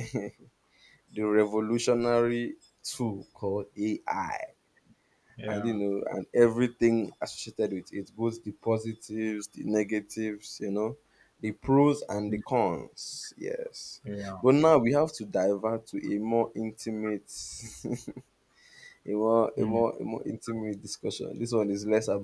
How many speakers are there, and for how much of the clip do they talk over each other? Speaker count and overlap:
two, about 3%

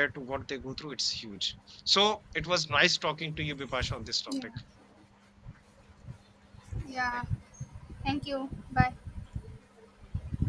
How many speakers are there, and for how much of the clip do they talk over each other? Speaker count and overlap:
two, about 2%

